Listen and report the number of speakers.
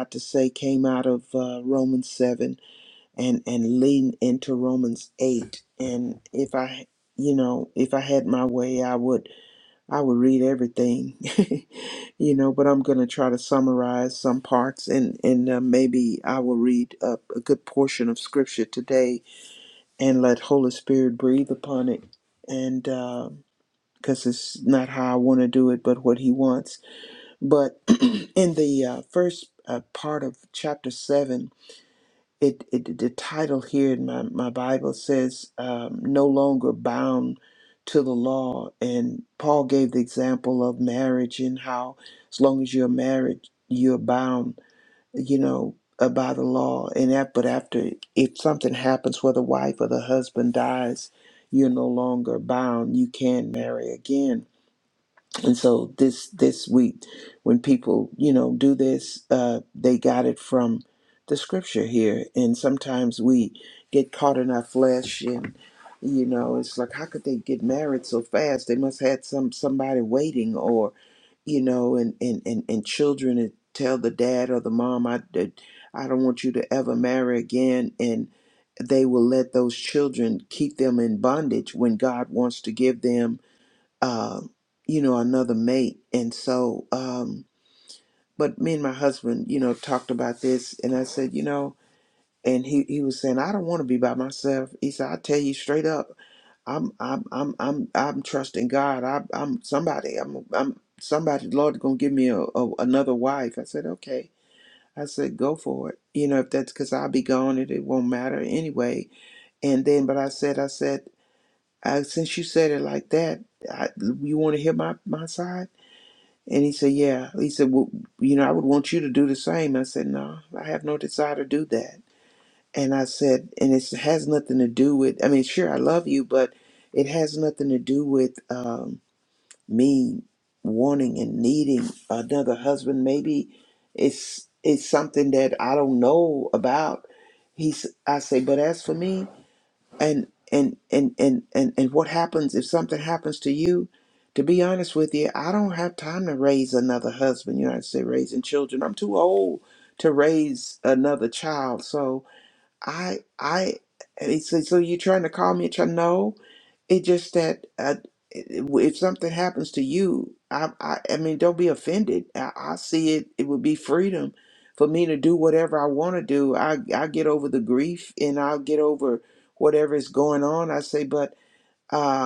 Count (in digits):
1